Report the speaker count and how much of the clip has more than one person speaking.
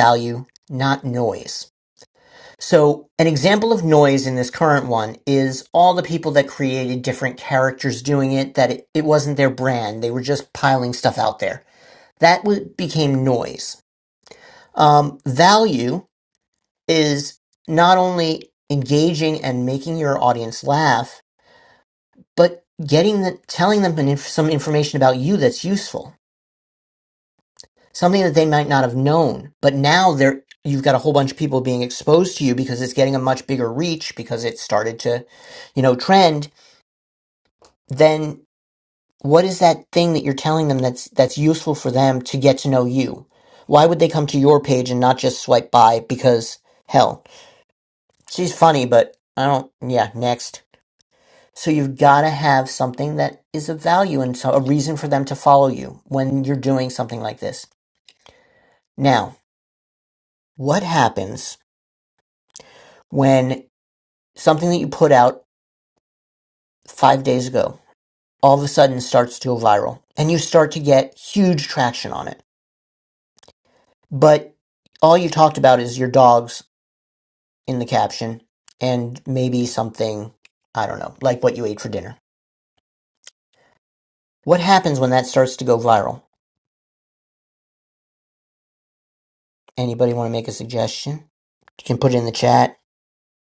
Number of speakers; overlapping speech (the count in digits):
1, no overlap